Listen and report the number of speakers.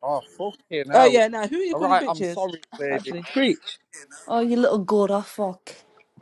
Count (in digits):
3